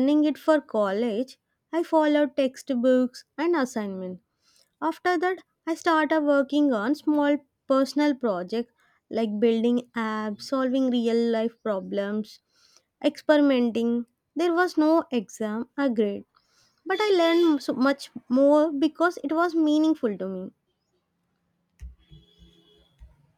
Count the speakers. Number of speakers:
1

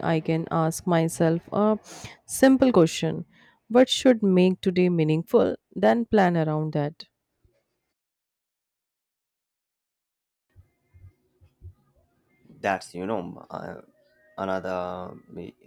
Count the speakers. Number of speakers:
2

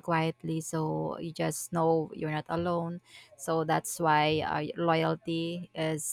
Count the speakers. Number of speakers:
1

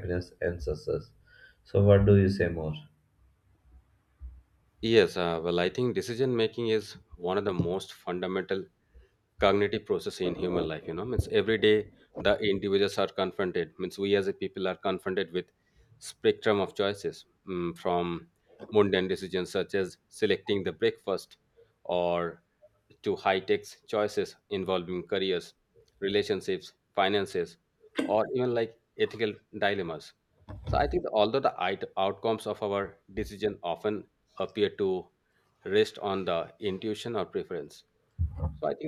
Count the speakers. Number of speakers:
2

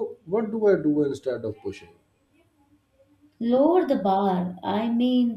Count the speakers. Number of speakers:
2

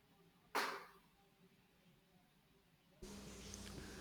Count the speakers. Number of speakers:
0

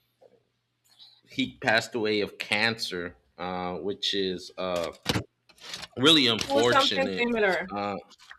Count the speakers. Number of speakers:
2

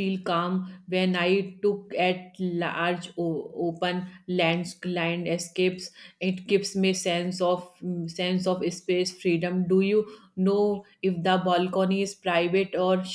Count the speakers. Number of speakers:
1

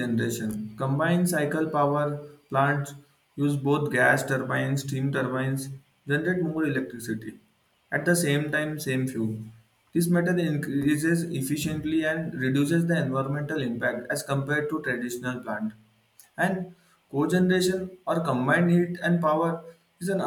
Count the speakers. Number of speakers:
1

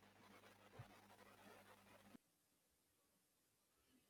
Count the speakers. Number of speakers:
0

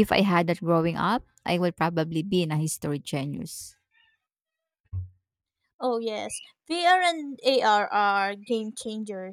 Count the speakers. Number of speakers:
2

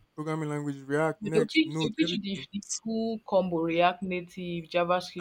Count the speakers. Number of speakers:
2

